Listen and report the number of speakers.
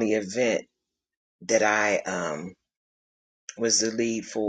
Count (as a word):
one